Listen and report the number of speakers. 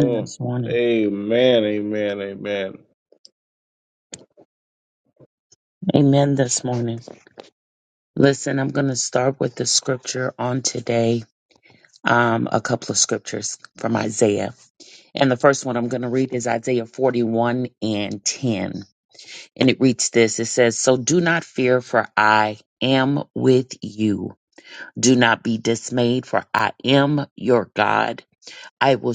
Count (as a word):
two